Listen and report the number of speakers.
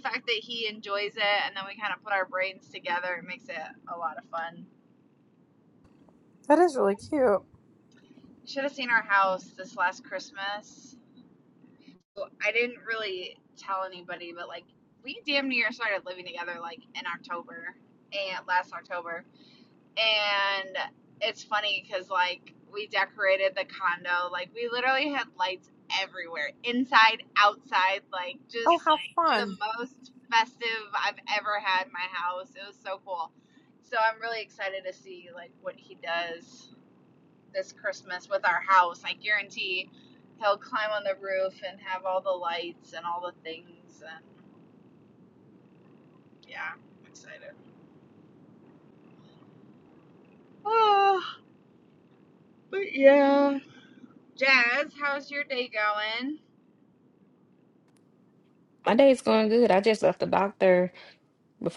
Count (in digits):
3